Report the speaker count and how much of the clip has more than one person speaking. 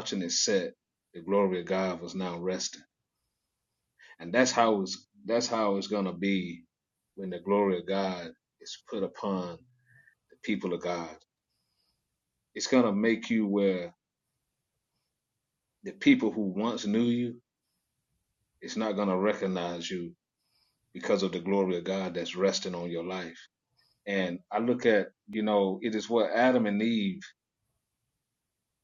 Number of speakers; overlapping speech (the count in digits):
1, no overlap